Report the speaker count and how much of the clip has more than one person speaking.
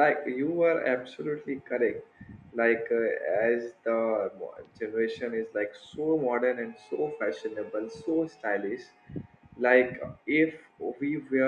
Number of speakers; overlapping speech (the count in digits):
1, no overlap